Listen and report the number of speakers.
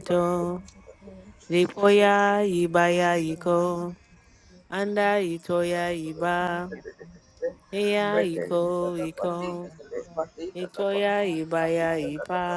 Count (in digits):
2